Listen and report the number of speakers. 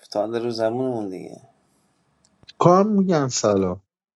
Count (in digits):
2